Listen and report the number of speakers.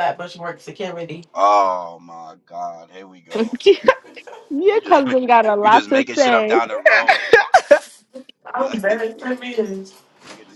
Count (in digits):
3